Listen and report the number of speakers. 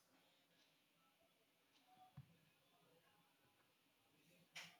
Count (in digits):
0